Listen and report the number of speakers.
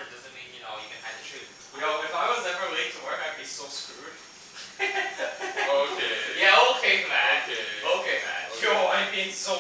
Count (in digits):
3